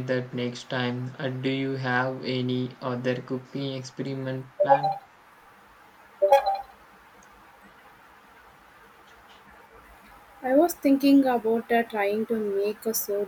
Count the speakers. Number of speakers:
2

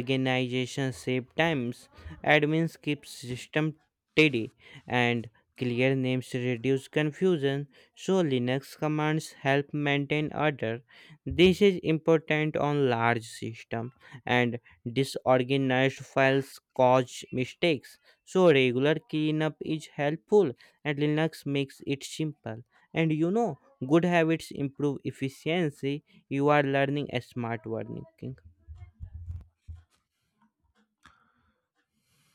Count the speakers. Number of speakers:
1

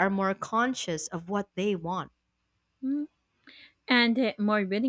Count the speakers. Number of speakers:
2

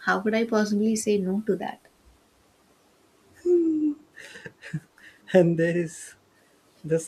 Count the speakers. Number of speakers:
2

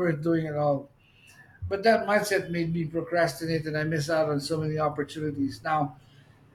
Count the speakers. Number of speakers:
1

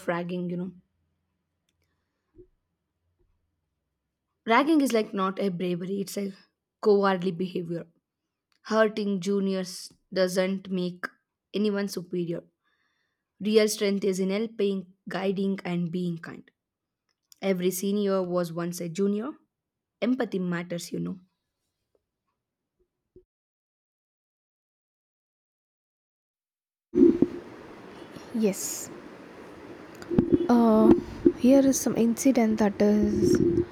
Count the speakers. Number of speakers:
2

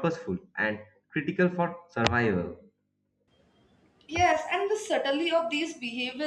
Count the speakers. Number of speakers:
2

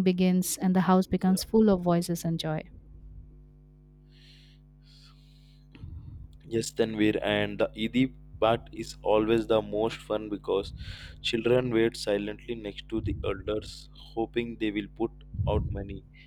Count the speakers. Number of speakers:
2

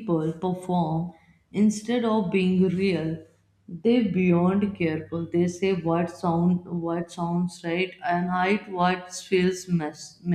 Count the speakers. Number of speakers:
1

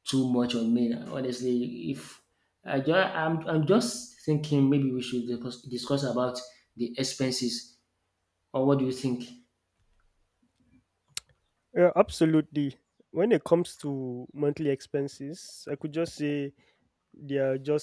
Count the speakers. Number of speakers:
2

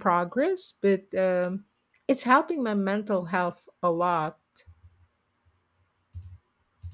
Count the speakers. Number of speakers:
1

